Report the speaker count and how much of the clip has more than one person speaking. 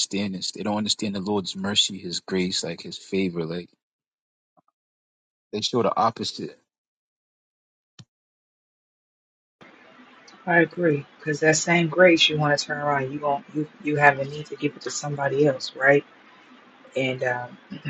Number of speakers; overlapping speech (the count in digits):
2, no overlap